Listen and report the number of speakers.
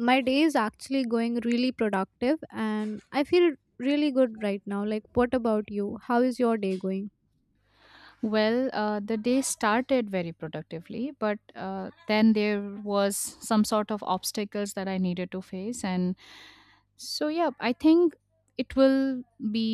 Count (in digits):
2